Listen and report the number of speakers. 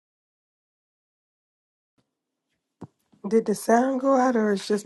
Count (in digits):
1